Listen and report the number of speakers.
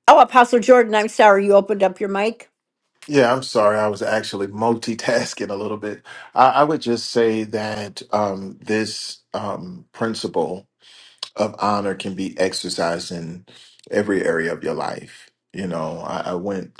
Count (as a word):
two